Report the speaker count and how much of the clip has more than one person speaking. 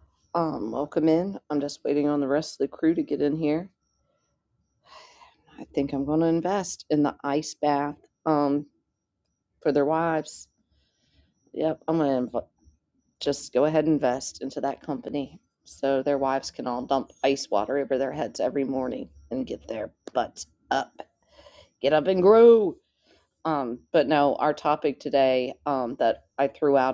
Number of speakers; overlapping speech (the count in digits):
1, no overlap